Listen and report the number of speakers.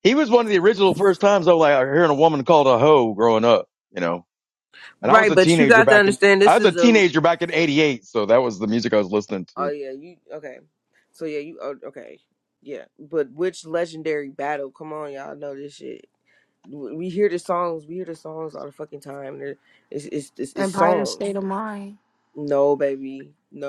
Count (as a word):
three